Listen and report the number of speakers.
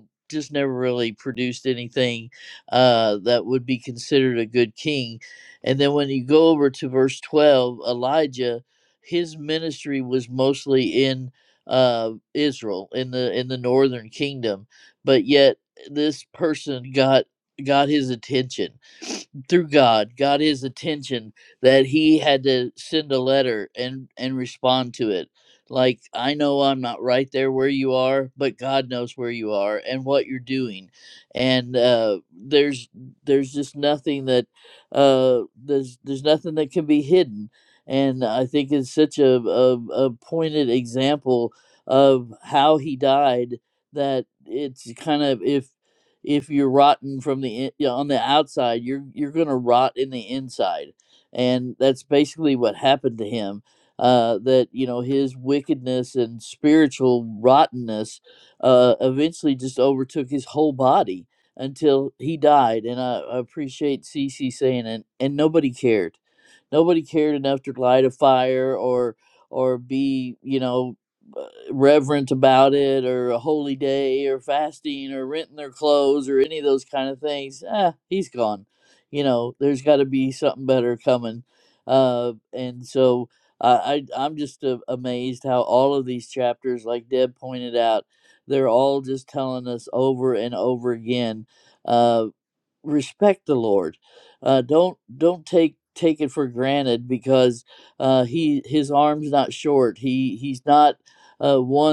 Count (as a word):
one